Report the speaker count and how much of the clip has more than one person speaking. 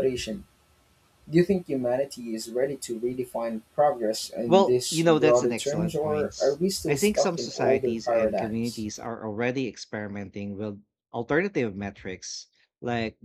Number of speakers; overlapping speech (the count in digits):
2, about 27%